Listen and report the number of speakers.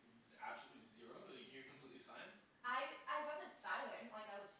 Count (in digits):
2